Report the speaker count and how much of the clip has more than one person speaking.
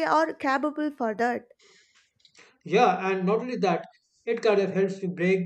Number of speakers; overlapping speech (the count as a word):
two, no overlap